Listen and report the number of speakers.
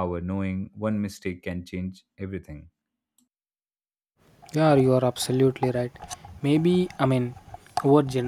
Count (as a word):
two